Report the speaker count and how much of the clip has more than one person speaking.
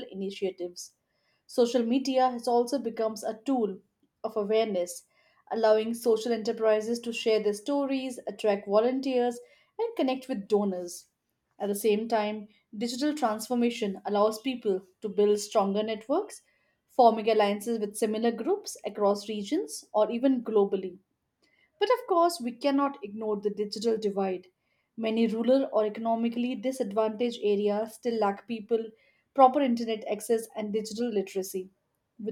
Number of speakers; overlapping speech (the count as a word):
one, no overlap